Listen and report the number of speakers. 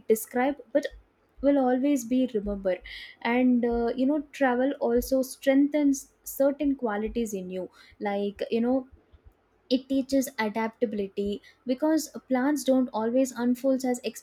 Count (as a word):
one